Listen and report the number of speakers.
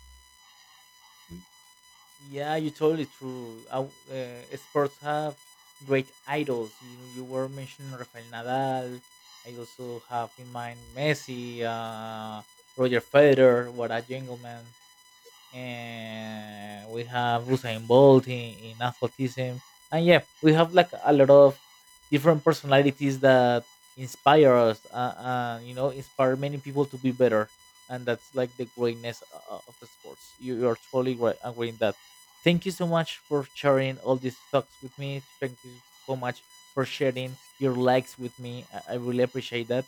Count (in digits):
1